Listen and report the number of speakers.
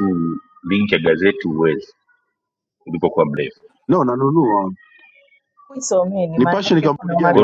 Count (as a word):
three